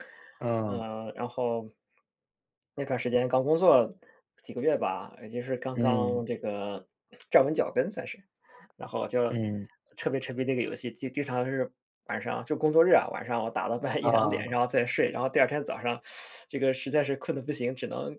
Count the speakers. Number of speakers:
2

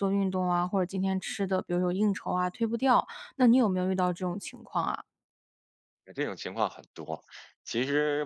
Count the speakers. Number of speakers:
2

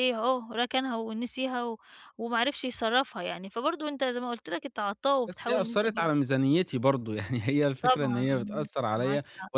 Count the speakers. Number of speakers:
2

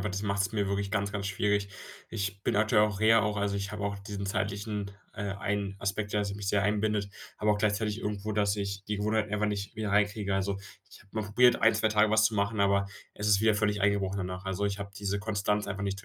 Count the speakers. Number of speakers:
1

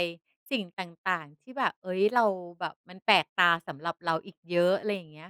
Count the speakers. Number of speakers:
1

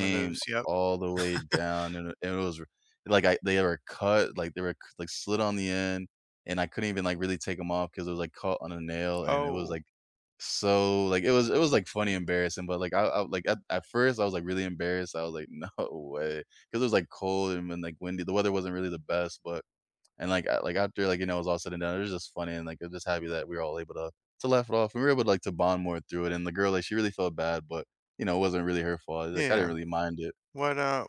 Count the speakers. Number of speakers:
2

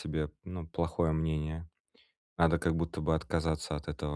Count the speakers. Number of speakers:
1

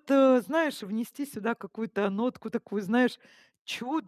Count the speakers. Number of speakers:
1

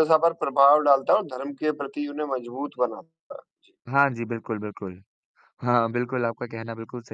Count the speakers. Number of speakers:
2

